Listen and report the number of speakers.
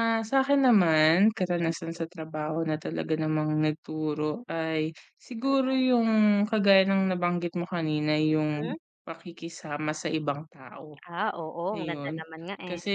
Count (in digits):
2